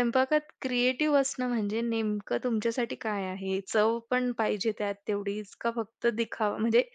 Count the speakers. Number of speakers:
1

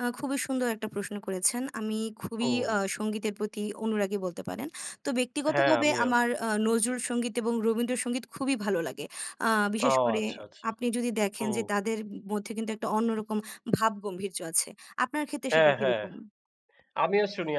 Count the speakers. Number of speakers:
2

